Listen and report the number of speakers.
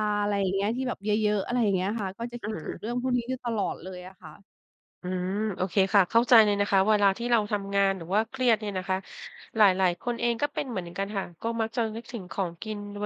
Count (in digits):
2